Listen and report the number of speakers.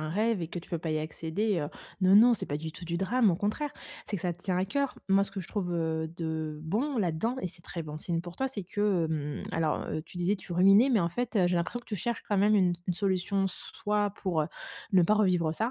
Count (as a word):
one